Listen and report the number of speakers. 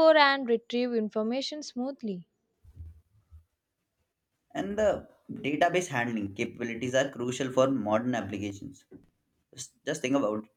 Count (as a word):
two